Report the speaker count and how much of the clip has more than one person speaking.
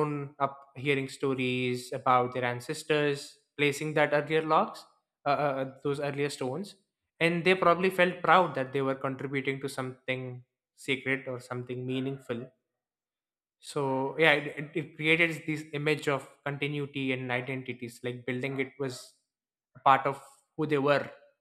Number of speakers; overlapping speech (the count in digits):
1, no overlap